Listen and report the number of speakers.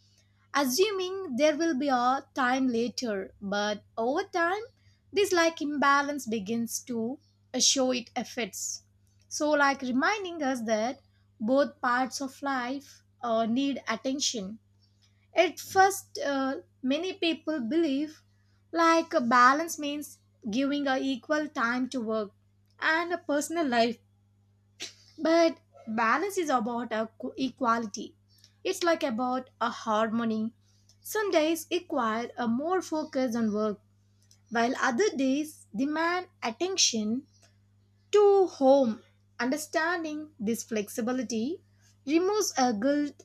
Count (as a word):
one